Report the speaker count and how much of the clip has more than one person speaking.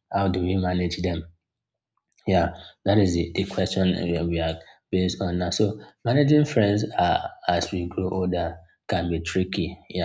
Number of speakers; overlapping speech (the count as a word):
one, no overlap